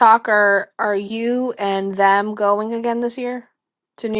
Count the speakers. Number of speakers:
1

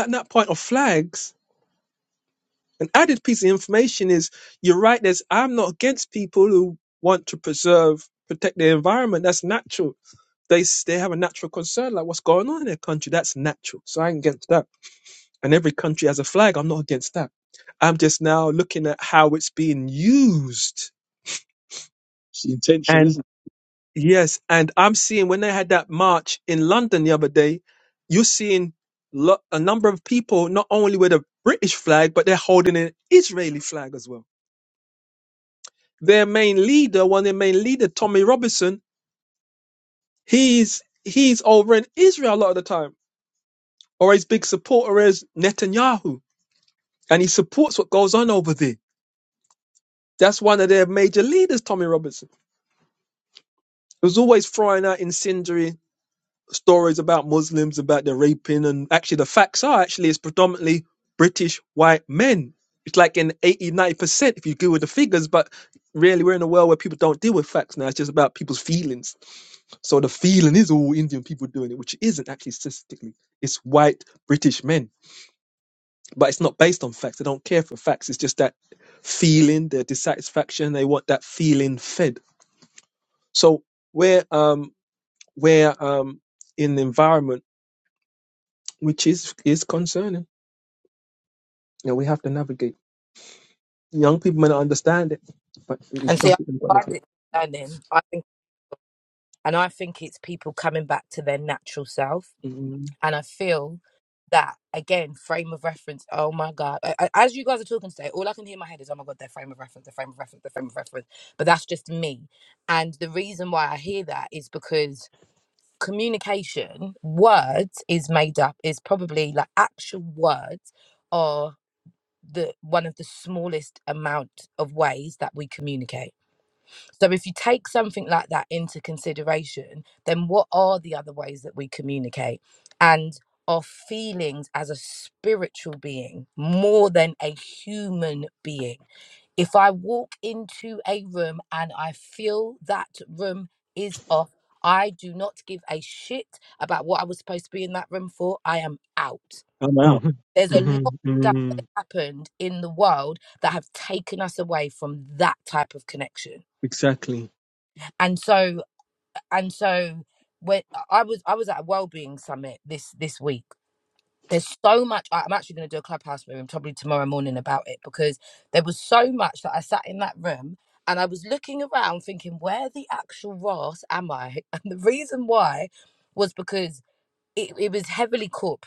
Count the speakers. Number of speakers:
3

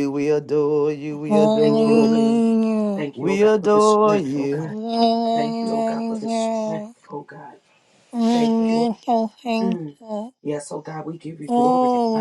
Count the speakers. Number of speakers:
3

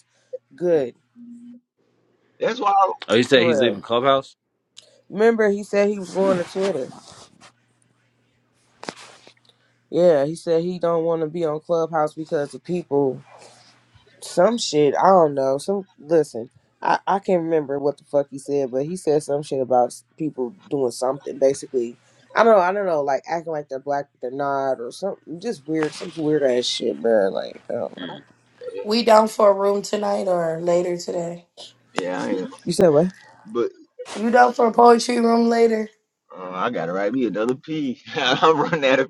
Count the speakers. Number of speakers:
4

